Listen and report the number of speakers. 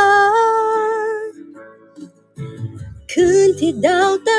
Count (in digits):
1